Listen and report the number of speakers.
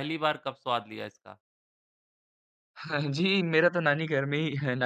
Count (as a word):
two